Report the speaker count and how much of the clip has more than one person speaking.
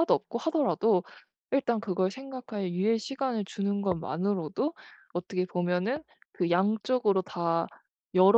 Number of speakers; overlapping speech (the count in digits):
1, no overlap